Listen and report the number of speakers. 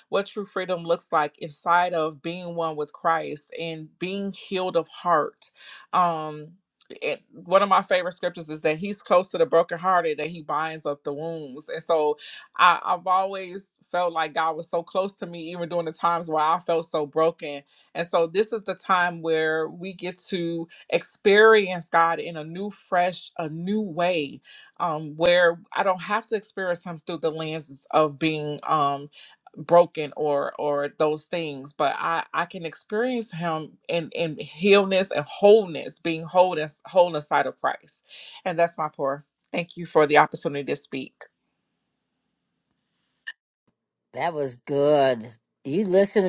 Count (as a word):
two